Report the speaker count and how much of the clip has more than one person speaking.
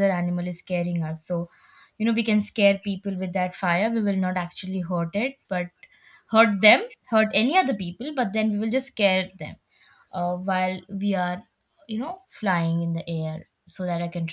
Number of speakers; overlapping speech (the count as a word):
one, no overlap